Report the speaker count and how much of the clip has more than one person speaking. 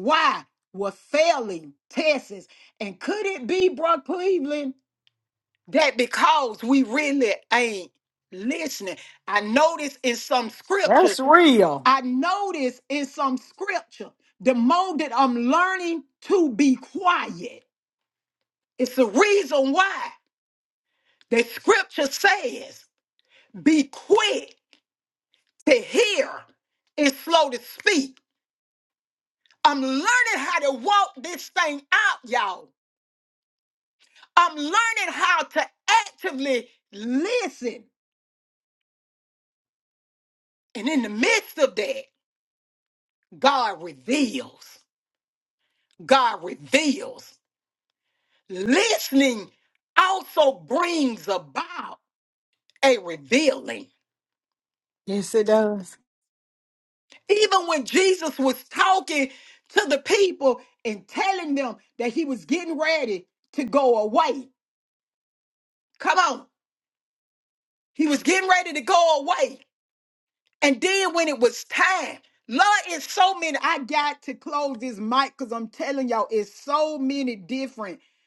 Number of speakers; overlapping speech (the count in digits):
2, under 1%